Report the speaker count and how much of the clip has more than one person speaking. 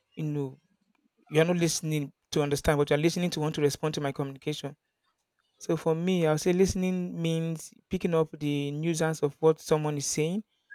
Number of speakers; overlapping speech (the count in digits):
1, no overlap